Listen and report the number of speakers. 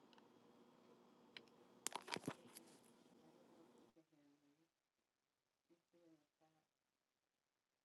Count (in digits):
0